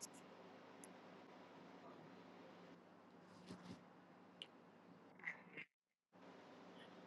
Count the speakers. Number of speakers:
zero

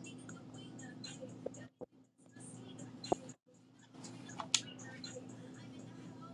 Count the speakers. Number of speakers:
zero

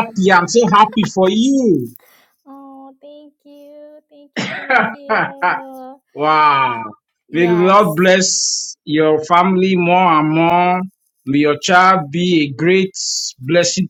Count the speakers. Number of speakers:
two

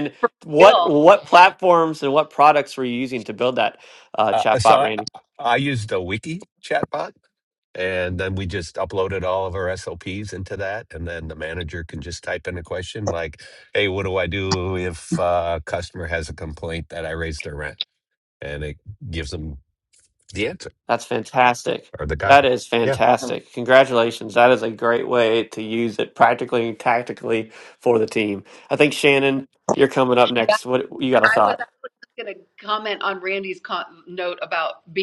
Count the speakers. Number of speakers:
three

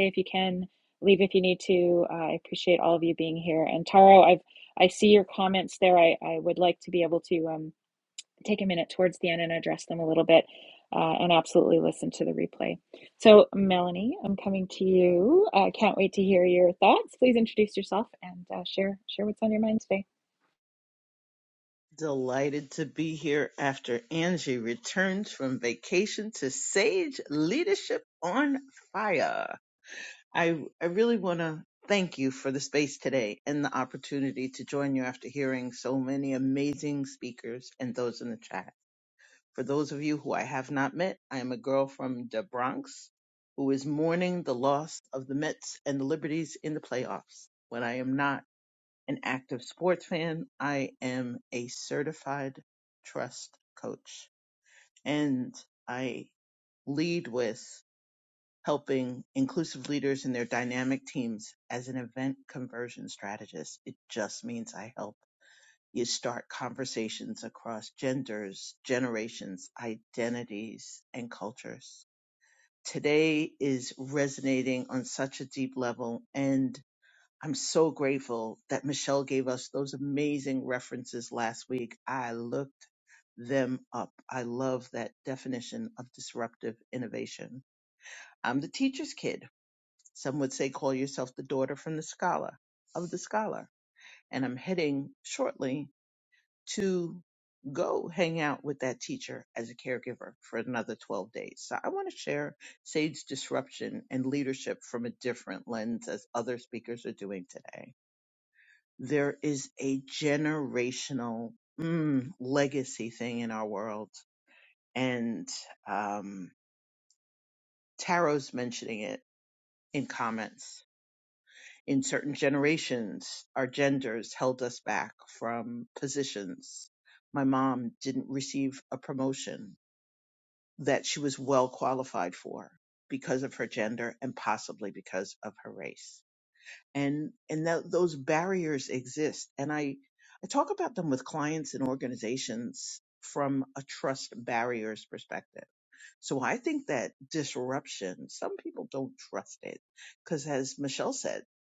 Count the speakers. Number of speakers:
two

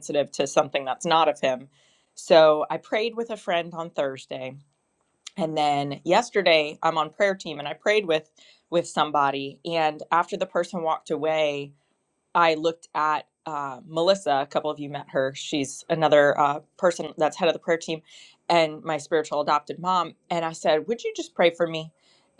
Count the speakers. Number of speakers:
one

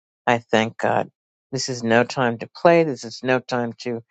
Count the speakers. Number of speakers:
one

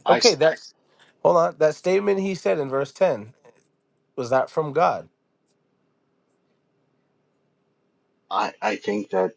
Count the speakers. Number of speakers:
two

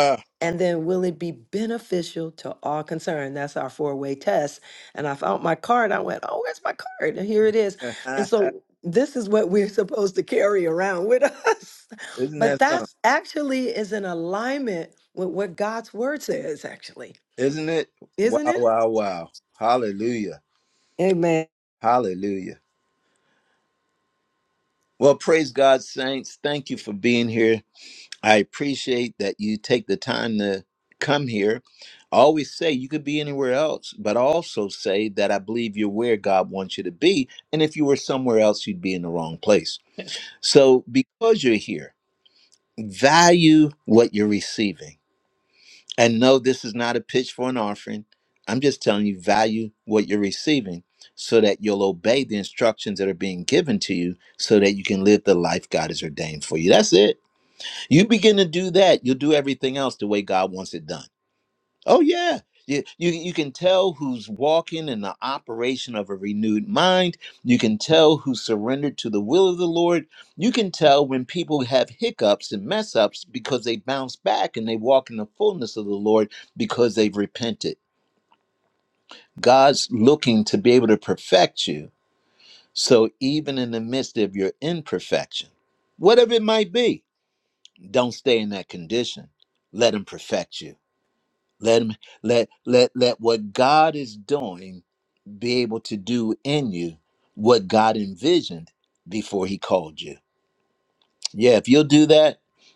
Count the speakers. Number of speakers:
two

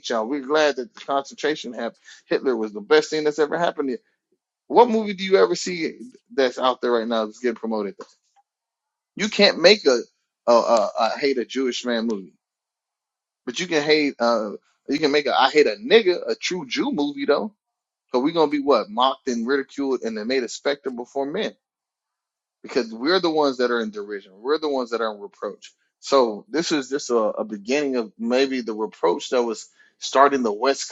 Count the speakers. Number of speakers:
one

